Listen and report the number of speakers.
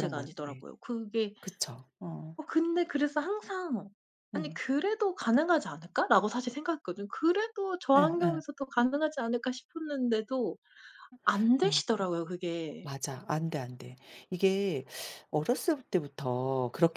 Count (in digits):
2